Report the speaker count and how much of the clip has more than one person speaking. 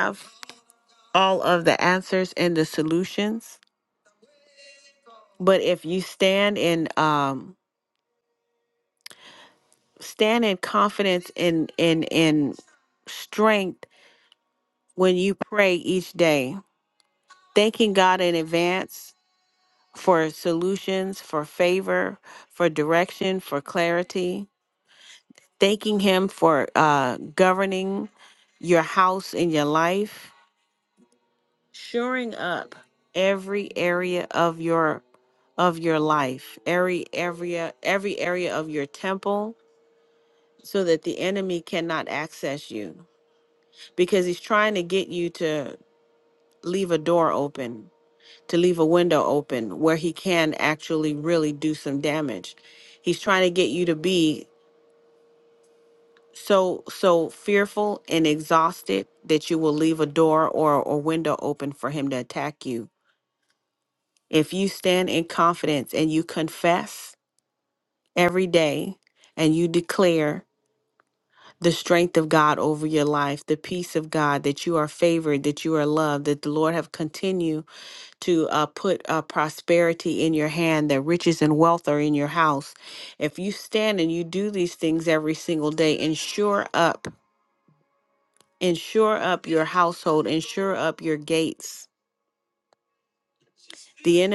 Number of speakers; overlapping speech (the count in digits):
1, no overlap